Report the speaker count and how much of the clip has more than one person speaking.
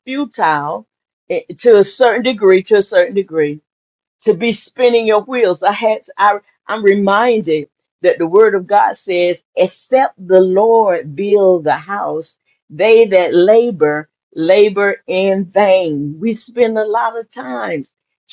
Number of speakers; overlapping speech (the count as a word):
one, no overlap